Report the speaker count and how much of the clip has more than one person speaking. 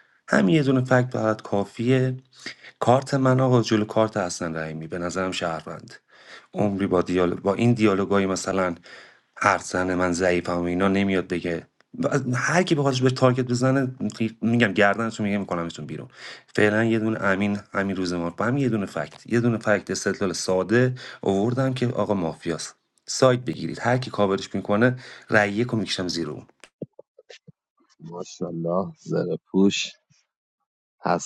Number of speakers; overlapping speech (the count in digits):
2, no overlap